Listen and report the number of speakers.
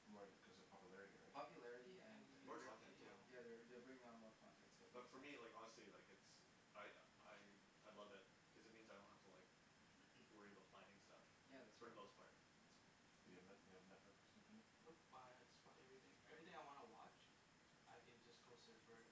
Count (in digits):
4